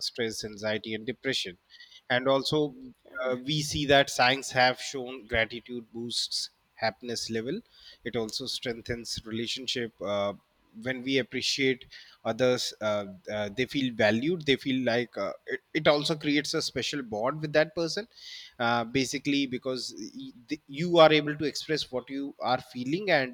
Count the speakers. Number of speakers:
one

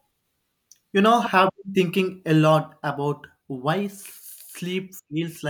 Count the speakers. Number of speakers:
one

